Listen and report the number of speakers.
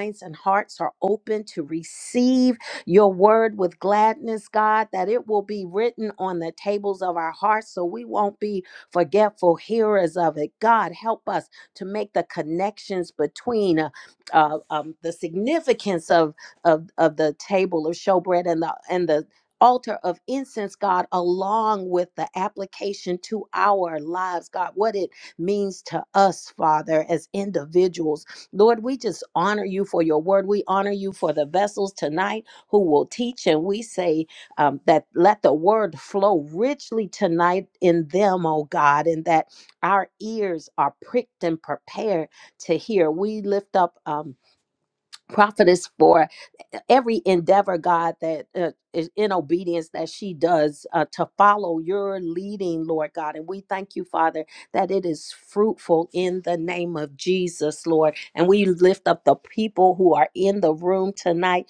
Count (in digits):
1